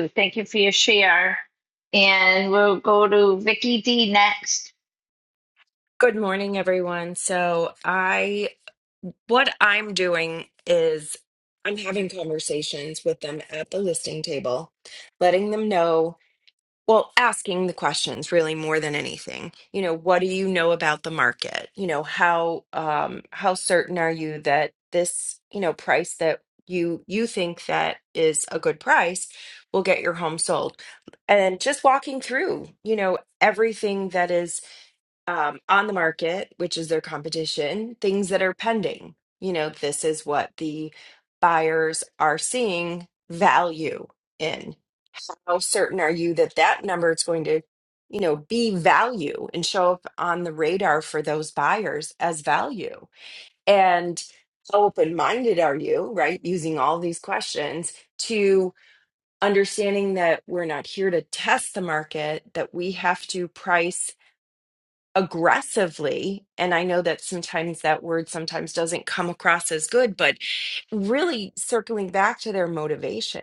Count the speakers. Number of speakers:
two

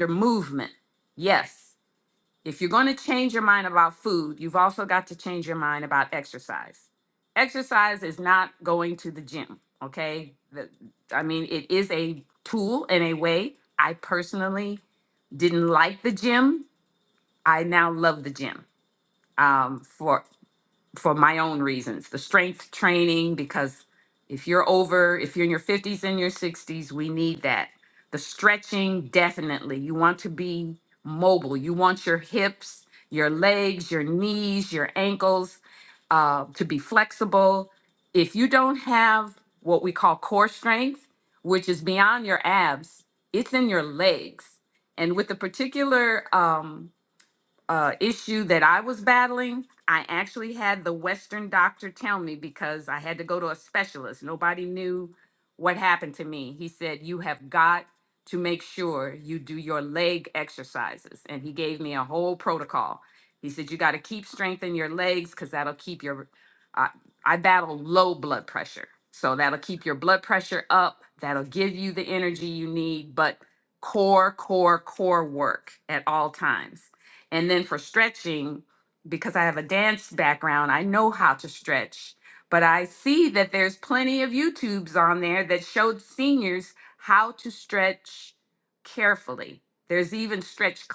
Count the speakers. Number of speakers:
one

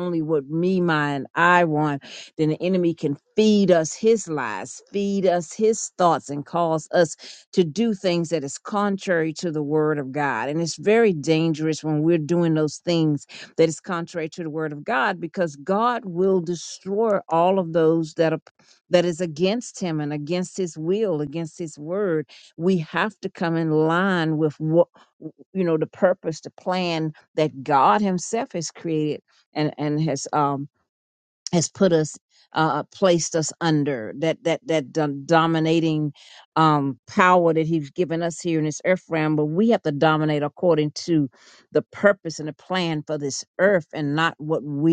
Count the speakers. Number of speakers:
one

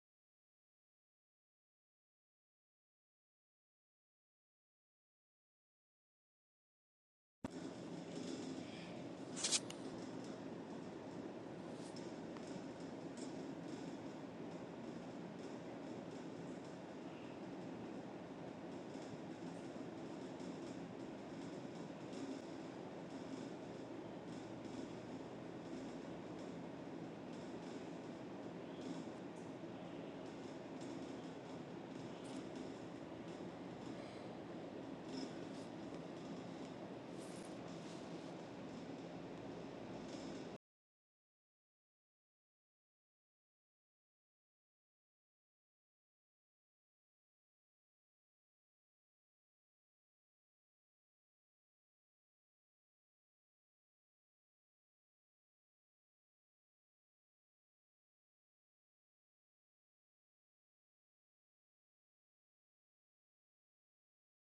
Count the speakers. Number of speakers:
zero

